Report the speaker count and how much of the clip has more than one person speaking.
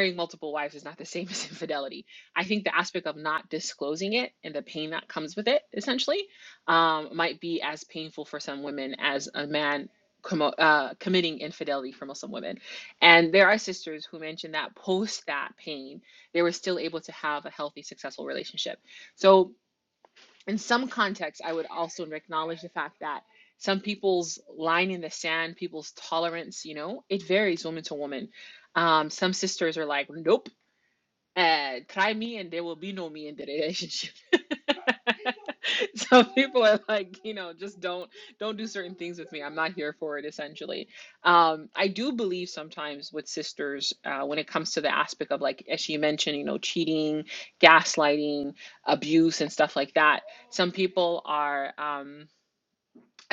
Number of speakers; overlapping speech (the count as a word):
one, no overlap